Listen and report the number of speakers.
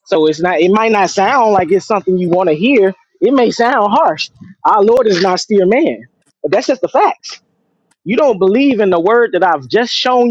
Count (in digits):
1